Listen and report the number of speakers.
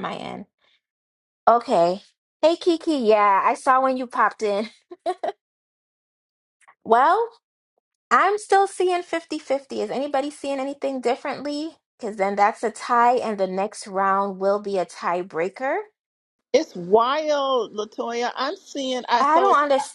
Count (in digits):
2